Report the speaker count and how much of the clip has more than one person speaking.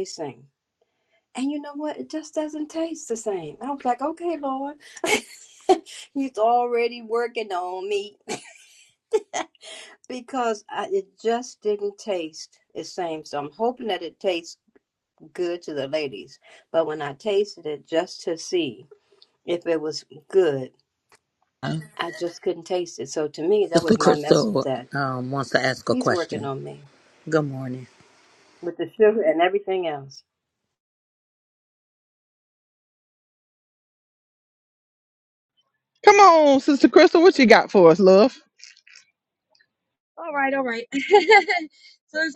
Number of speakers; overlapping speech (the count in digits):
4, about 4%